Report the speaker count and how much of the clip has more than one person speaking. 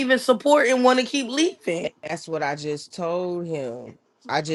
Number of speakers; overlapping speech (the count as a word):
two, about 1%